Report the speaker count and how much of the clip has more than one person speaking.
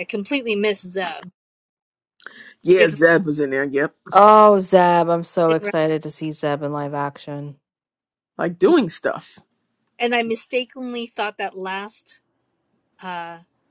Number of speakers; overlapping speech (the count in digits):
3, about 4%